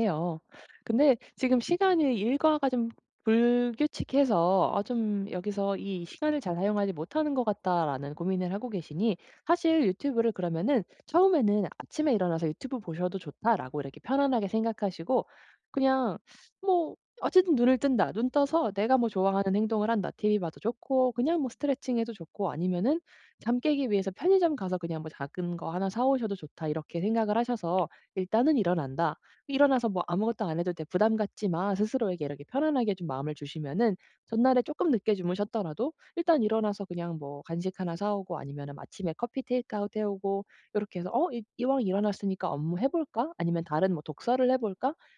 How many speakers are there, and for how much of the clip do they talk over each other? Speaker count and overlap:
1, no overlap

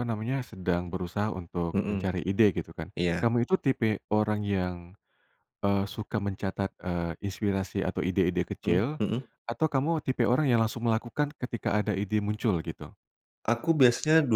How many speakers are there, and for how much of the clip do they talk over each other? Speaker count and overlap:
2, about 5%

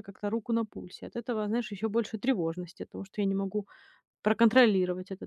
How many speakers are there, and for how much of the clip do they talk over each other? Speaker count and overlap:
1, no overlap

